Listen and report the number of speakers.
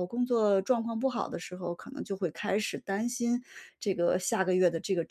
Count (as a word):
one